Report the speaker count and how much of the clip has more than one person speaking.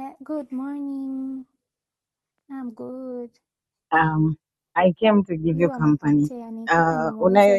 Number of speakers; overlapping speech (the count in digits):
2, about 25%